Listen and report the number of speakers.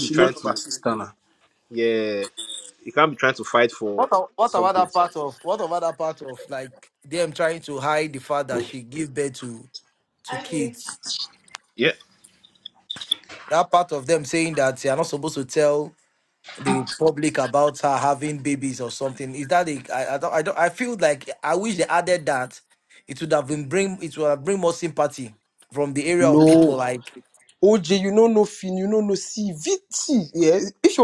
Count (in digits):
3